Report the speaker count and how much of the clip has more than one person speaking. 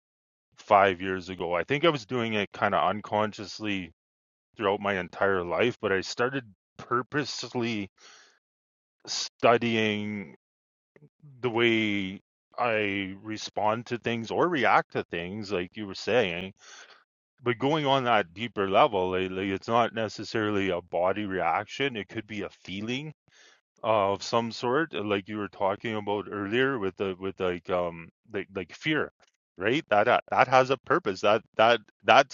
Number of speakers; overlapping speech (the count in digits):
1, no overlap